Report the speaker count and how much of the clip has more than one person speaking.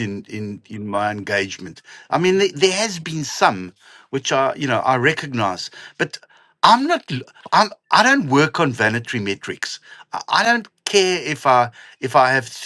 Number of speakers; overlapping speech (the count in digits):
1, no overlap